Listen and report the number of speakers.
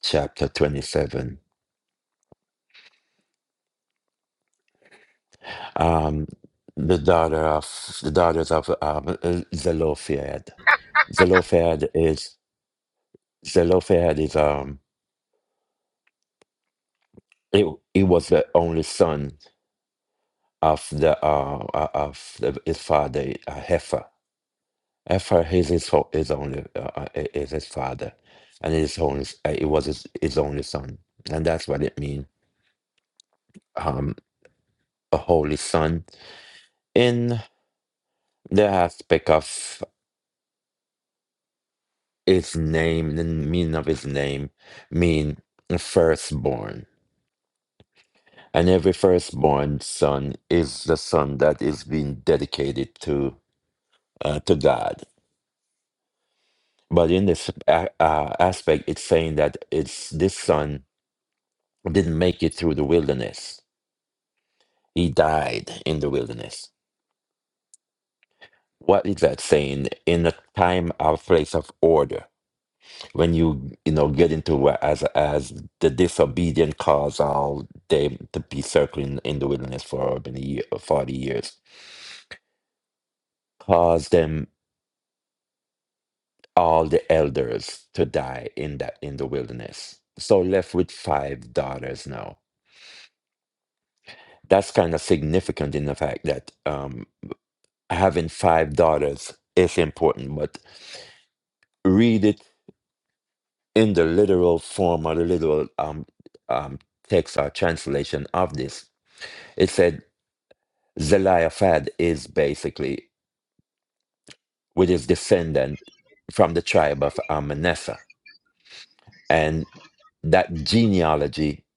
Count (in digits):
1